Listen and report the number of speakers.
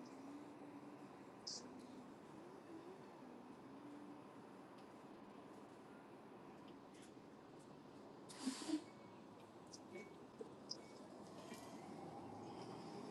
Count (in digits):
0